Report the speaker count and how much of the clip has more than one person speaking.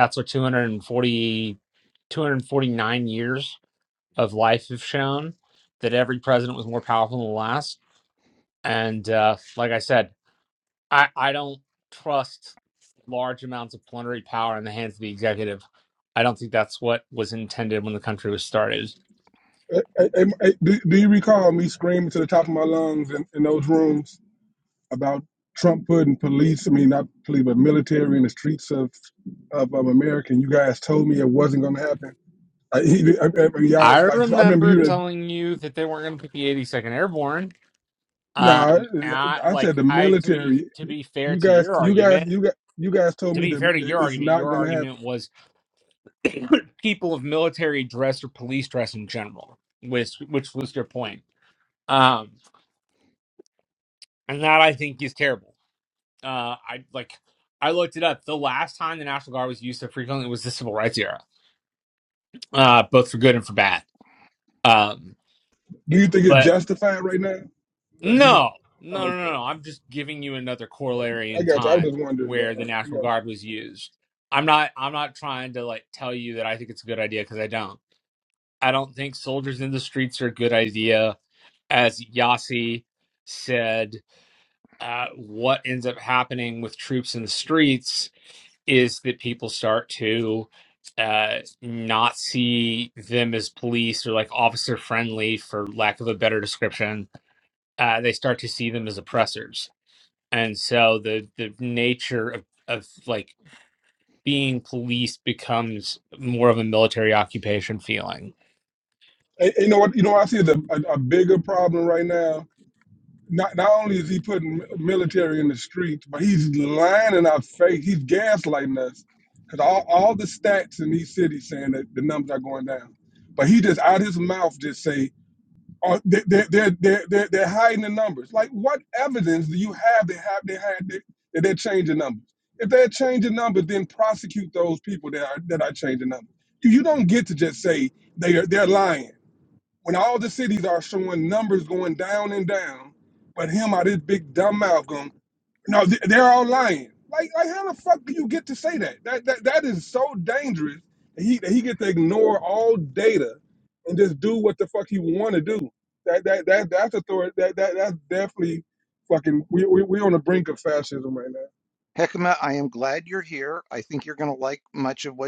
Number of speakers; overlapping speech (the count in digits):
3, about 5%